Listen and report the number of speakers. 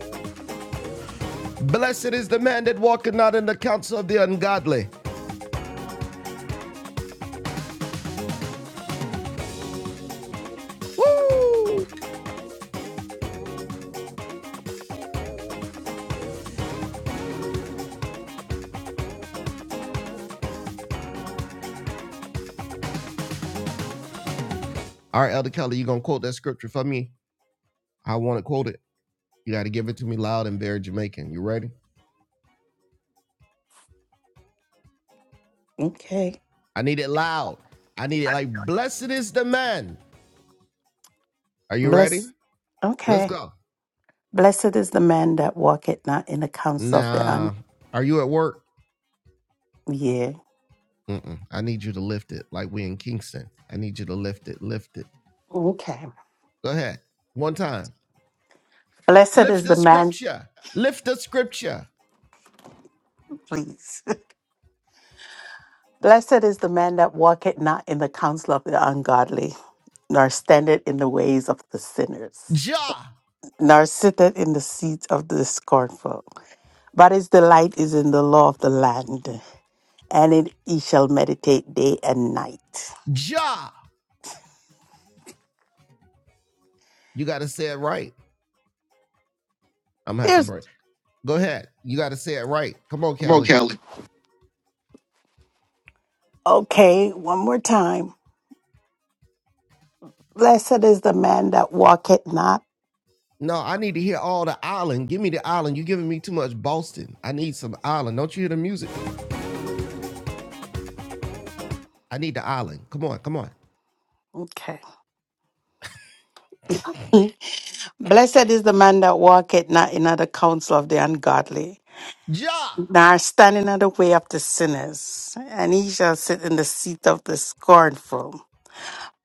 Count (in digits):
2